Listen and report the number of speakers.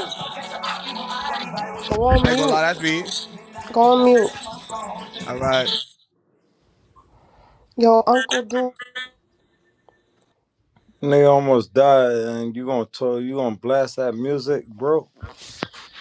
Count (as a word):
three